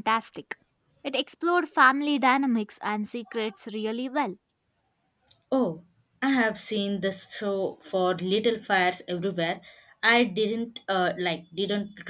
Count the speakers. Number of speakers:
2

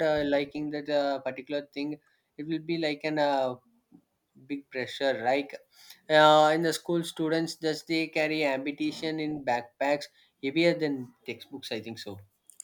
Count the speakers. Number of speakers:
1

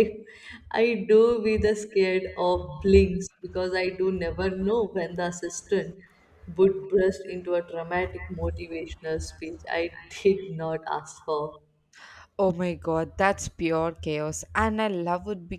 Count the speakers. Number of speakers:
2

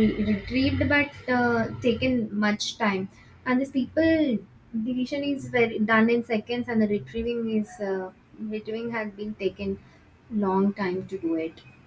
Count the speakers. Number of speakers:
1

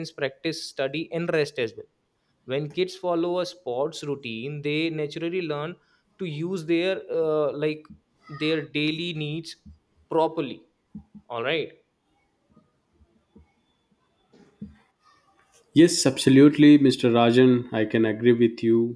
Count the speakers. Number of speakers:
2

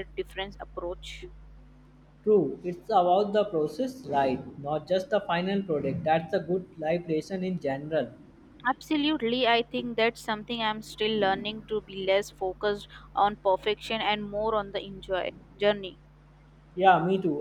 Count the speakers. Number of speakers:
2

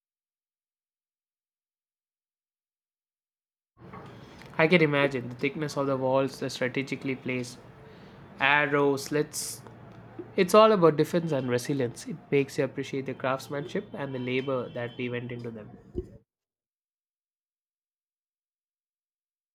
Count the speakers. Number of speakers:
1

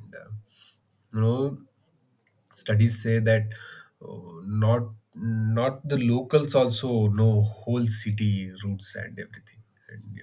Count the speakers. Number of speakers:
1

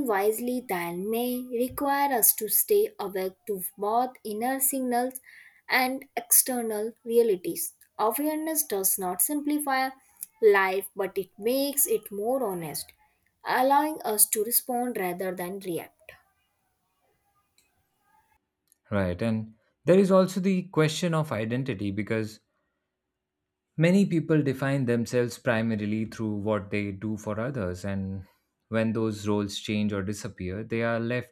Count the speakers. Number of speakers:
2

